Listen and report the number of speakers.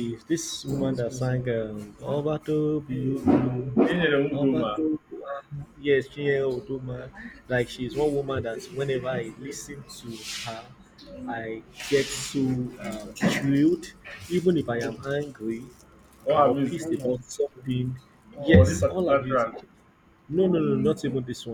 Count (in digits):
2